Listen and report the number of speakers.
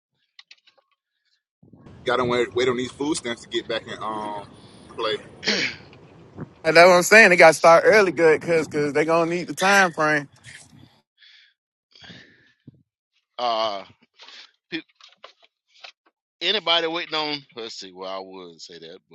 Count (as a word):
three